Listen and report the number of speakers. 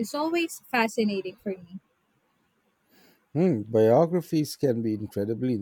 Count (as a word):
two